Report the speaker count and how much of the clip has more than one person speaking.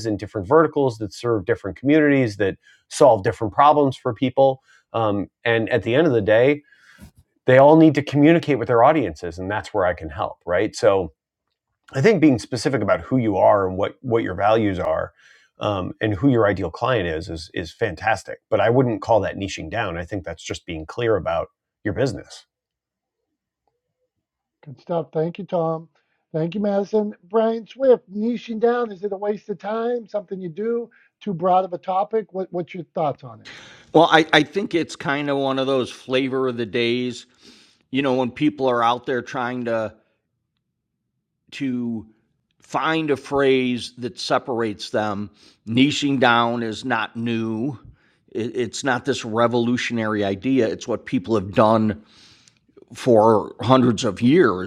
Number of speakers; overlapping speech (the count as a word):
three, no overlap